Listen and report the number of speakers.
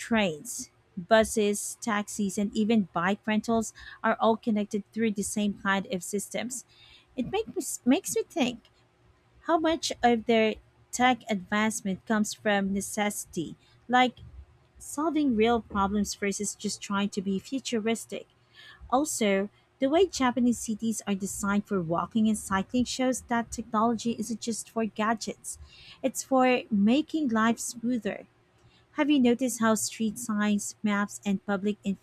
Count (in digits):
1